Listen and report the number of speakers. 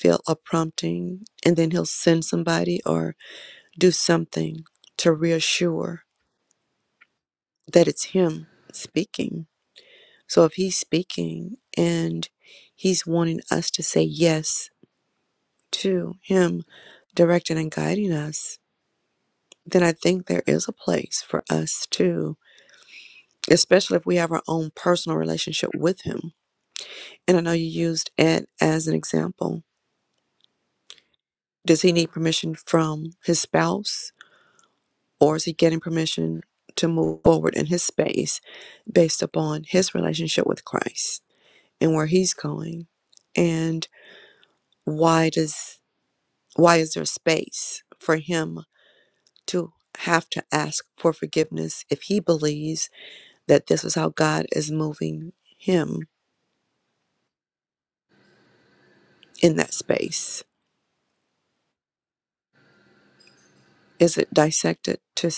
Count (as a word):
one